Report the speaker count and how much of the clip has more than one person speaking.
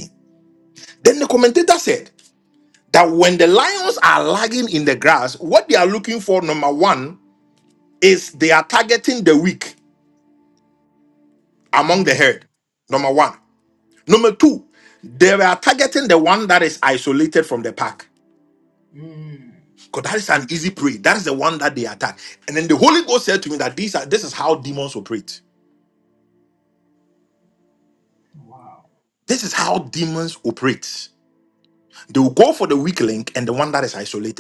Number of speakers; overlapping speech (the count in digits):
2, about 1%